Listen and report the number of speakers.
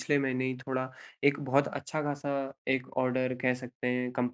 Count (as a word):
one